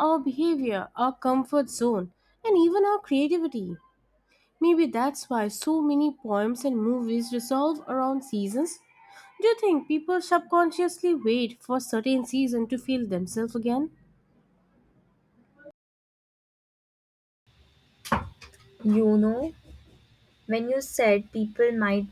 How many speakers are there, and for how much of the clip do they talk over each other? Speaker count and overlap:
2, no overlap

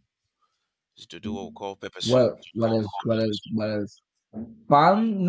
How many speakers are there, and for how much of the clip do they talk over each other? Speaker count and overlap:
2, about 14%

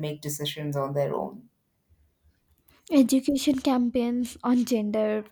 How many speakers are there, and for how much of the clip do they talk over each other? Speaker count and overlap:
2, no overlap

